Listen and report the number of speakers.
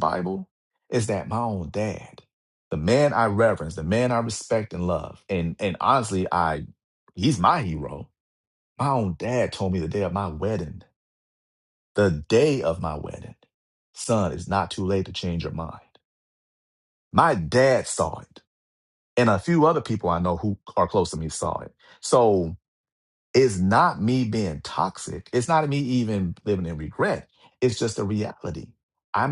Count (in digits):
1